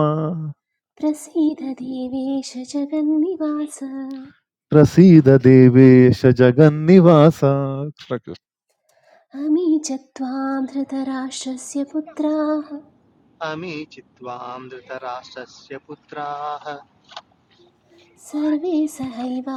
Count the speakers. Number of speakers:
three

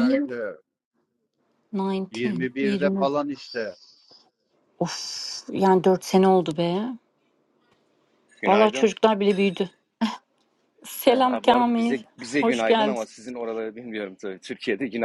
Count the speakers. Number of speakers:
three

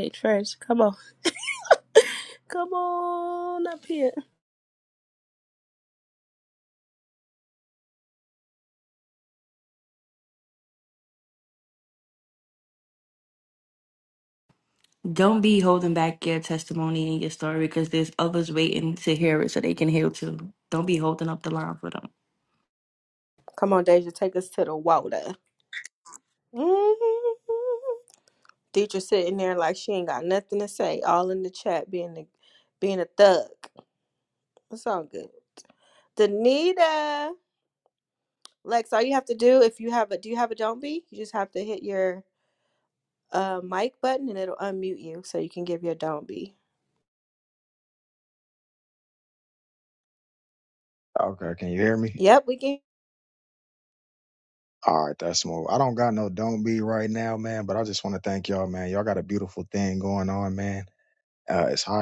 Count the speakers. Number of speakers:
four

